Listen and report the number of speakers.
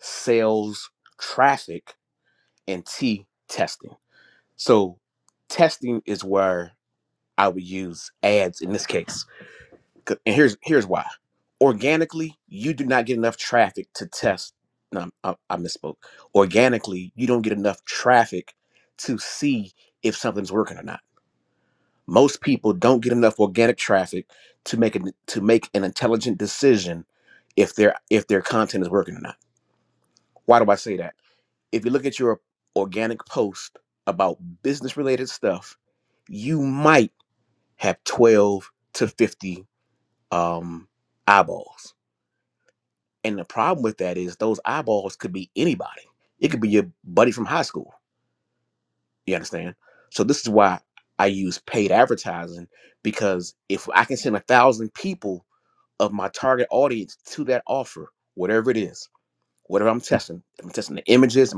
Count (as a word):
one